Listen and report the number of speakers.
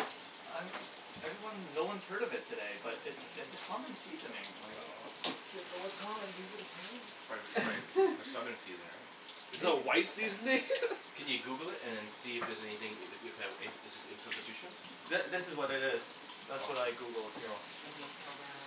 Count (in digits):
4